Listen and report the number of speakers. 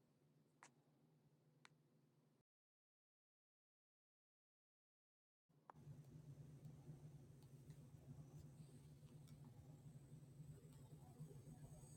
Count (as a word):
zero